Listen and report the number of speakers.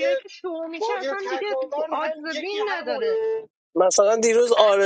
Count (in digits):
3